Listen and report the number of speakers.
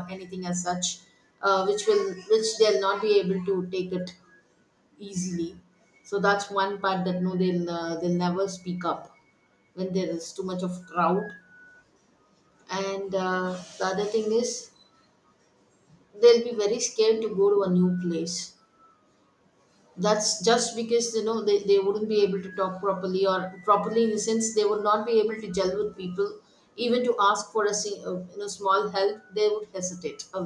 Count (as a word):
one